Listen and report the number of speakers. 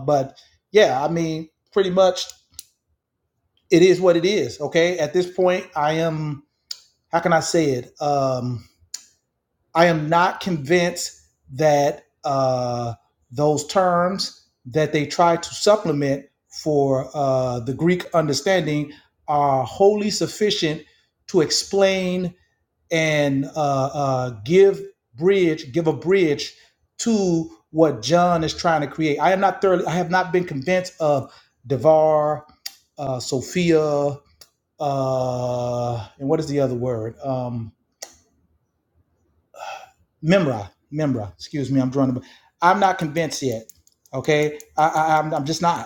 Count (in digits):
1